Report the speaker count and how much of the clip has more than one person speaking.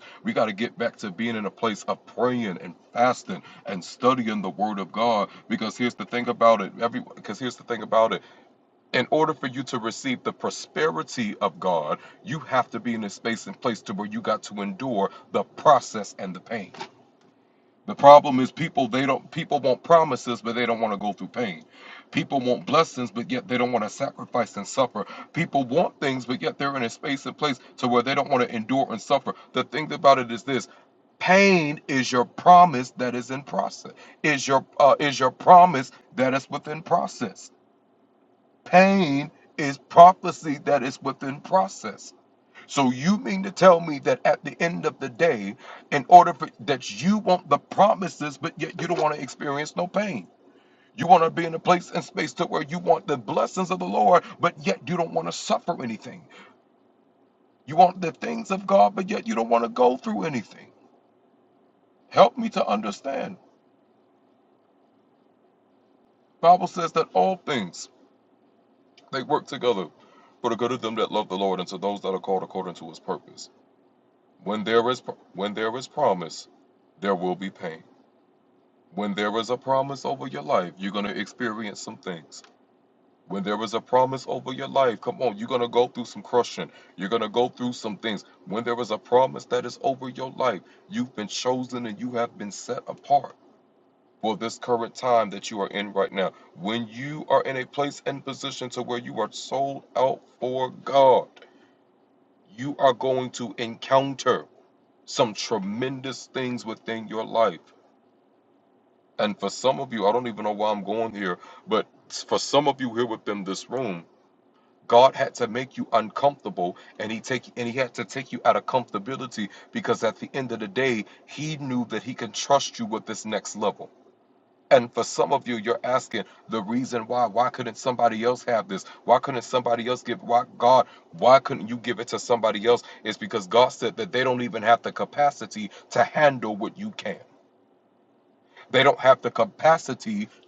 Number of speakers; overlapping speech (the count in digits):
1, no overlap